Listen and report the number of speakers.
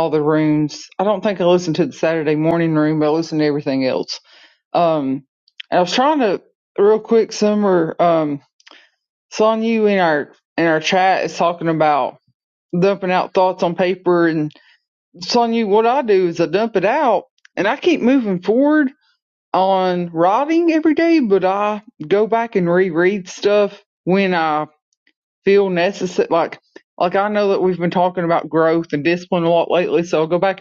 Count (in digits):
1